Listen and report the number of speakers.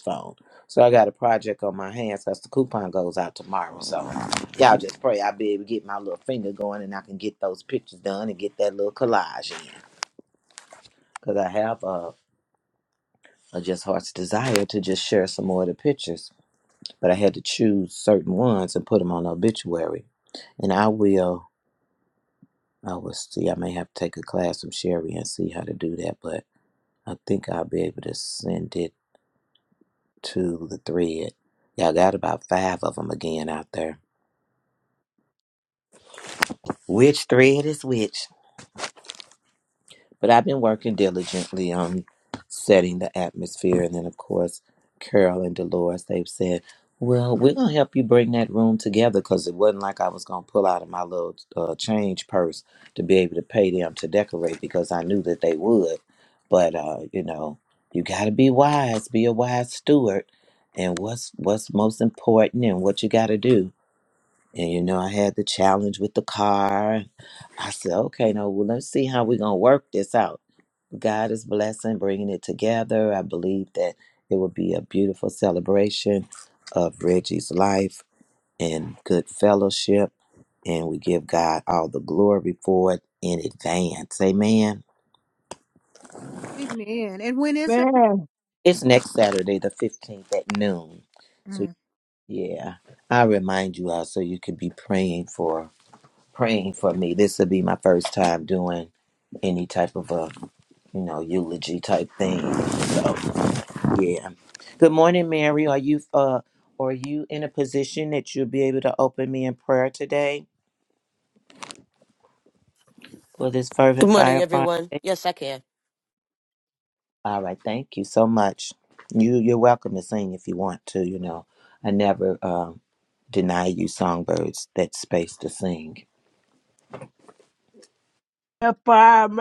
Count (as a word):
four